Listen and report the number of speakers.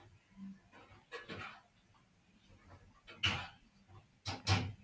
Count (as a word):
zero